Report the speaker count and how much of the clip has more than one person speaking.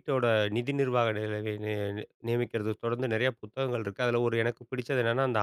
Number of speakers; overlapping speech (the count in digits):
1, no overlap